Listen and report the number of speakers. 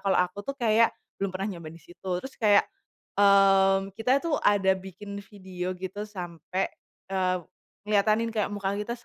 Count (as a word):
one